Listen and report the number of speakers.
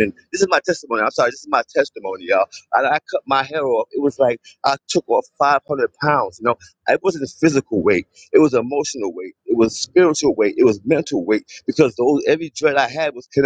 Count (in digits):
1